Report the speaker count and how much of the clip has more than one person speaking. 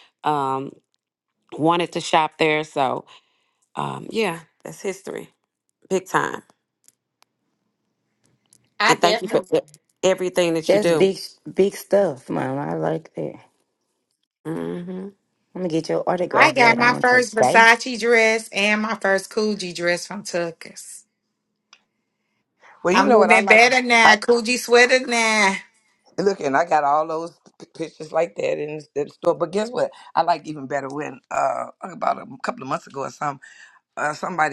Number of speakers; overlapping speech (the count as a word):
four, about 9%